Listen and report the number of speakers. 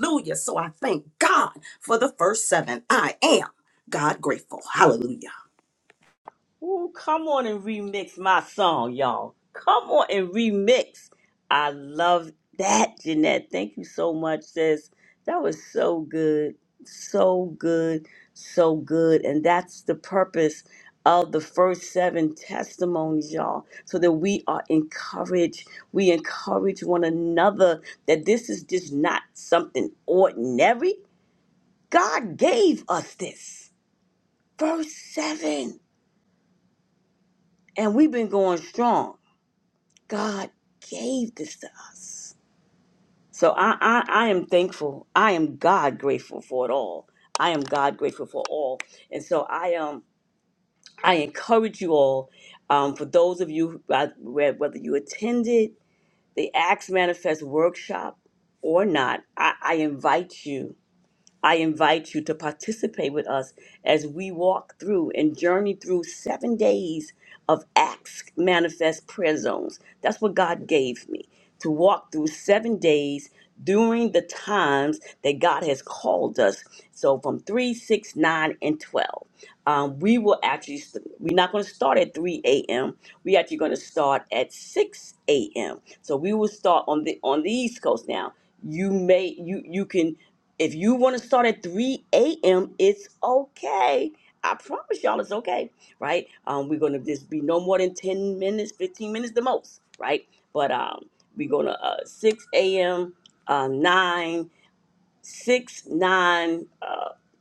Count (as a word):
two